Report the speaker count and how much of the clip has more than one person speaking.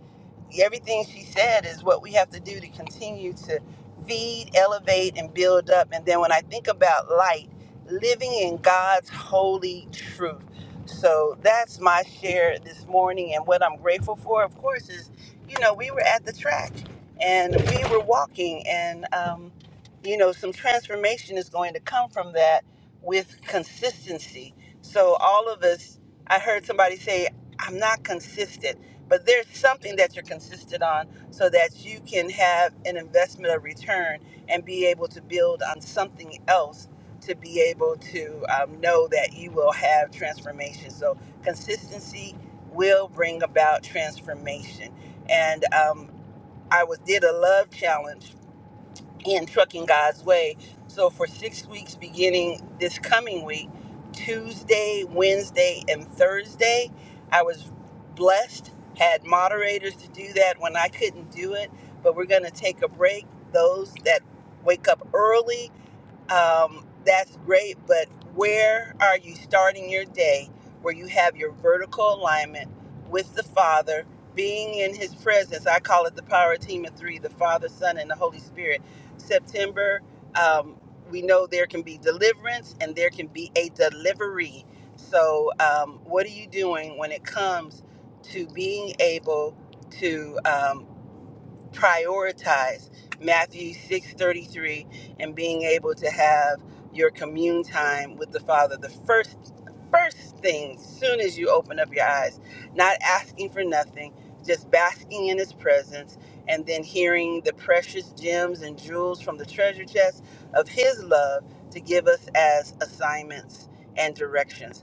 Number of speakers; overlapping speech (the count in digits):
1, no overlap